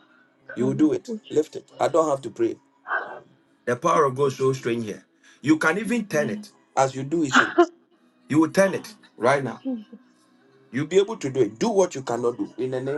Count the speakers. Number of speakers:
2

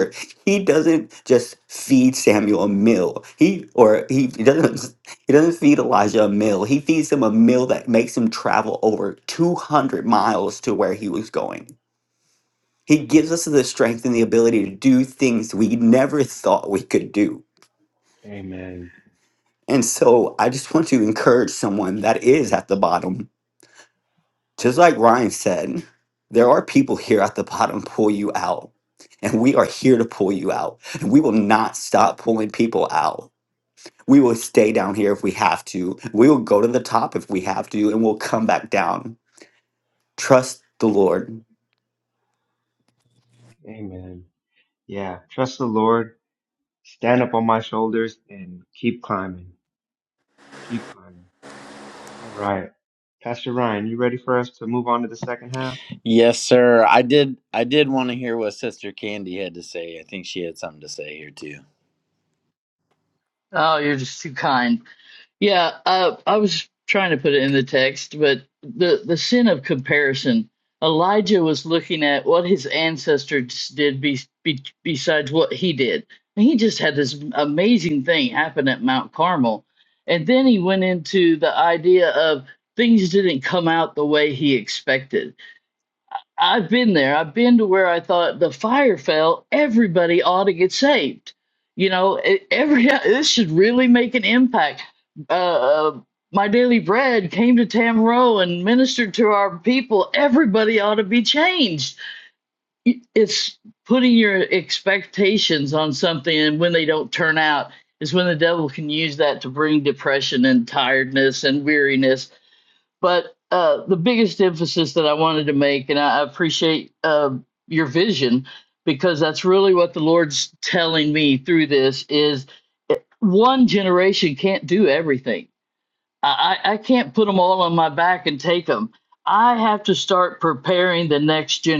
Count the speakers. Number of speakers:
4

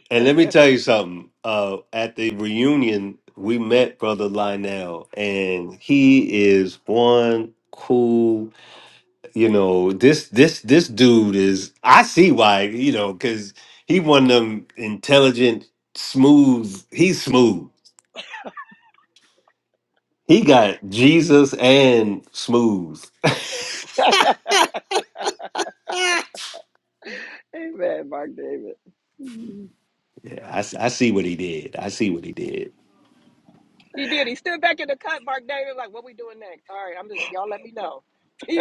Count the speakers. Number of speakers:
3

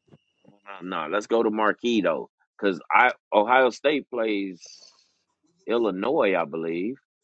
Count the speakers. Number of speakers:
1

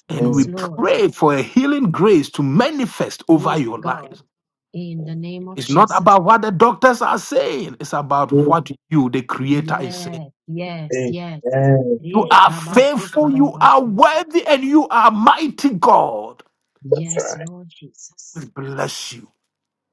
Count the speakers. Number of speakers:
3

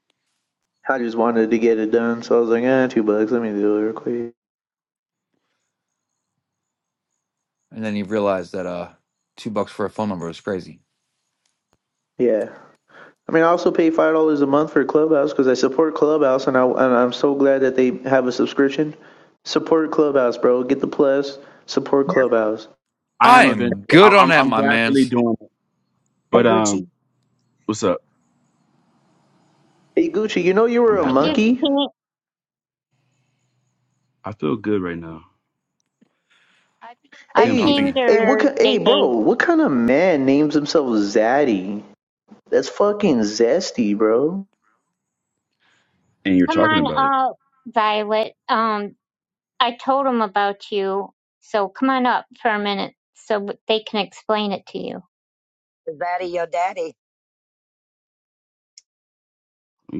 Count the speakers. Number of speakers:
5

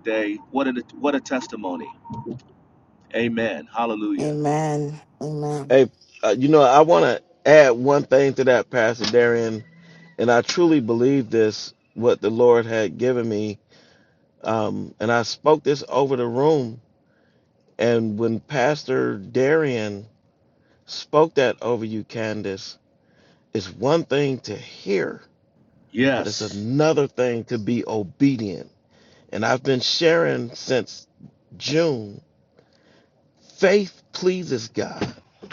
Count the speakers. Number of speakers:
3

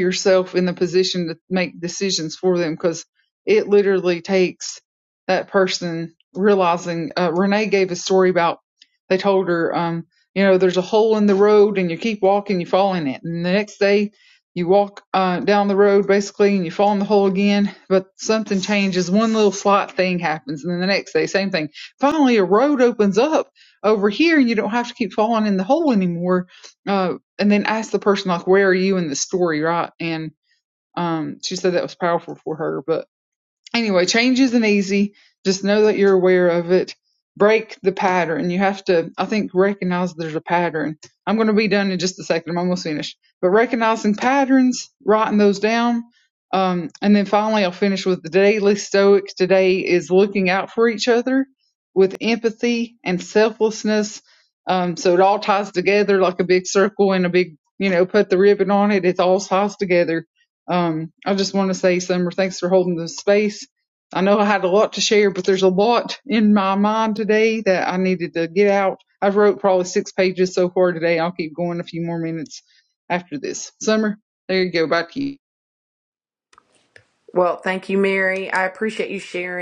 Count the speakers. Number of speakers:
2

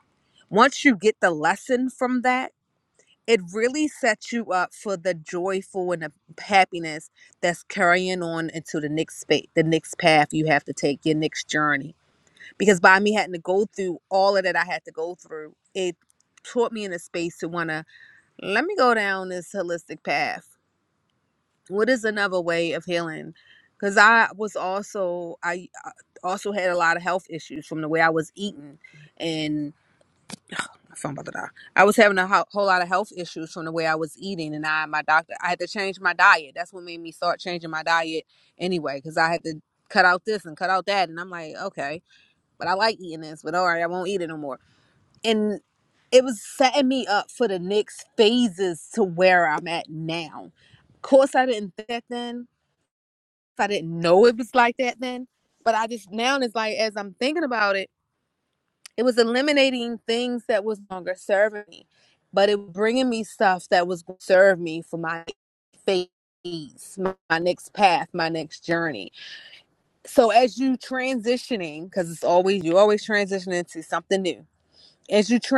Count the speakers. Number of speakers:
1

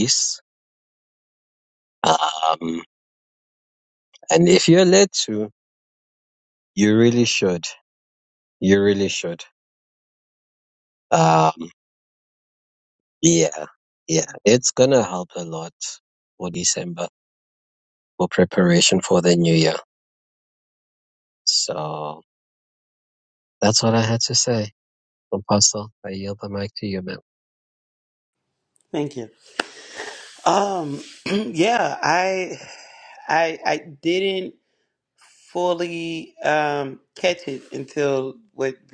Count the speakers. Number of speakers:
2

